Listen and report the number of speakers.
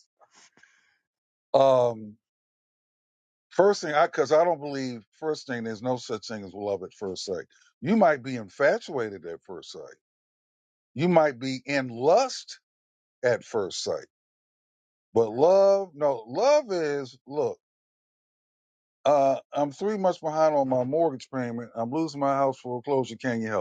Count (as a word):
one